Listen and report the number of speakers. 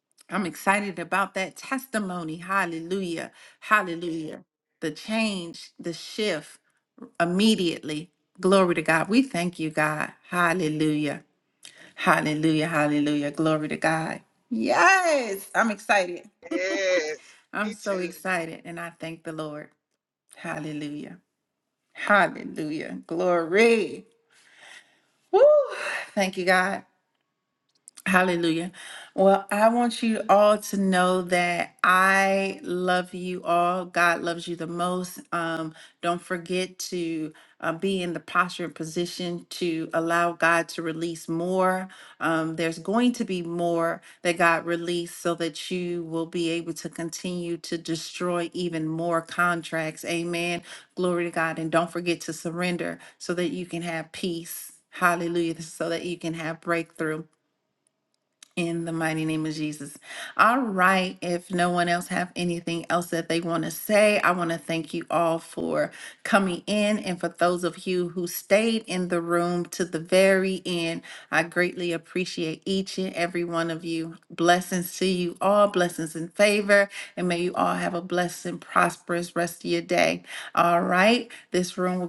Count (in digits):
2